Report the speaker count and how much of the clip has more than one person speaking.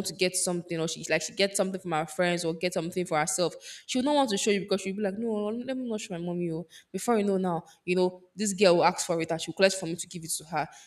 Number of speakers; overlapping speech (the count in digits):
1, no overlap